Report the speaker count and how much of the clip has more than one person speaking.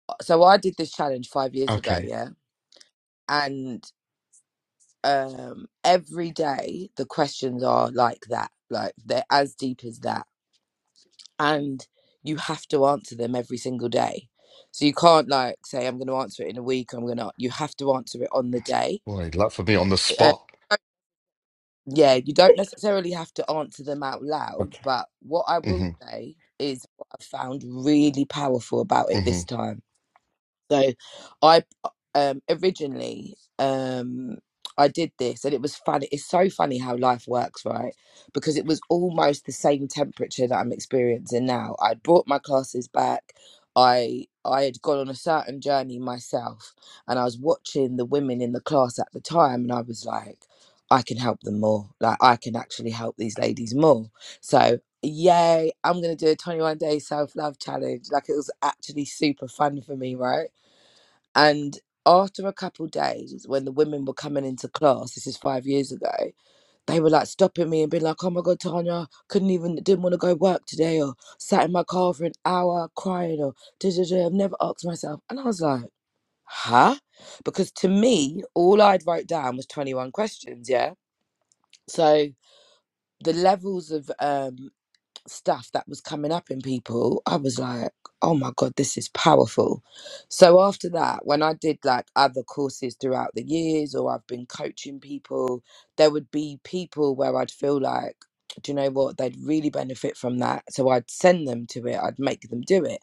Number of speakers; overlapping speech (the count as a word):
two, about 1%